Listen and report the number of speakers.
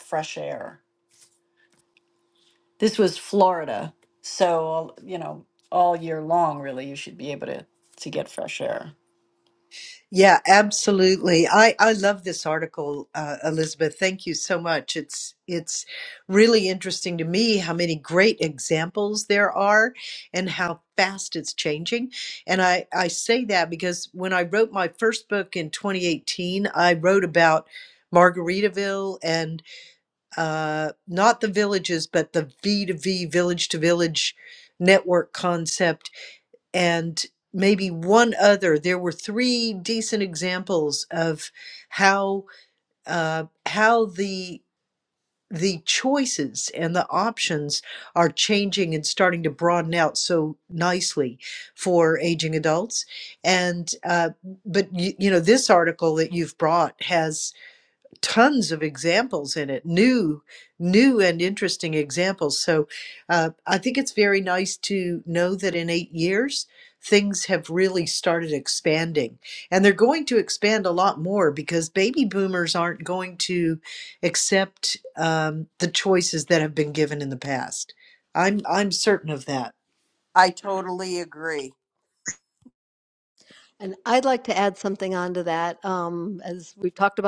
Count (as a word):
four